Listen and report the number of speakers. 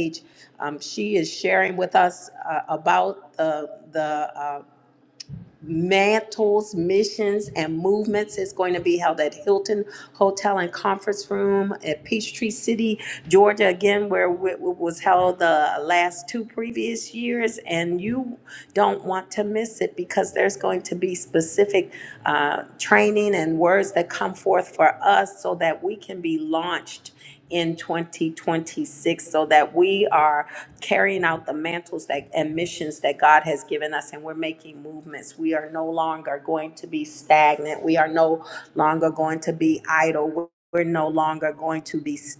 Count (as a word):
one